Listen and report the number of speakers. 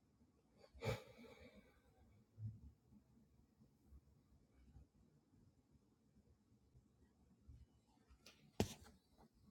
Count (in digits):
0